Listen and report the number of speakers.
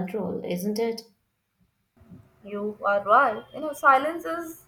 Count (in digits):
2